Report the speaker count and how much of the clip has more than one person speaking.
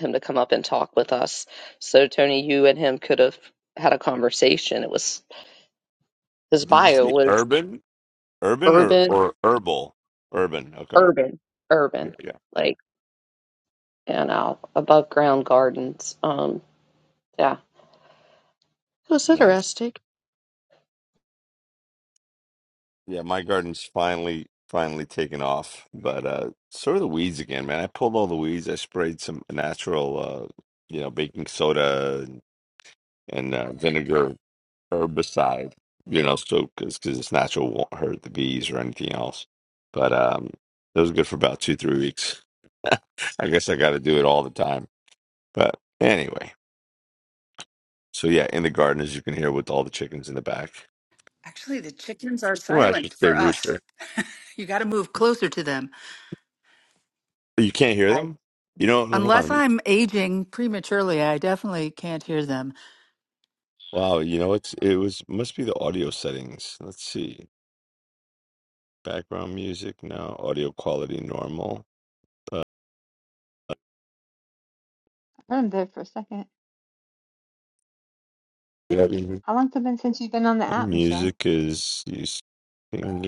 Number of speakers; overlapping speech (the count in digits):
4, about 4%